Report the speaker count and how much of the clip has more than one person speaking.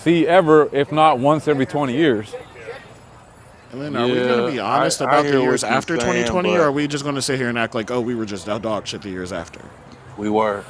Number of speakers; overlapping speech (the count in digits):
3, about 26%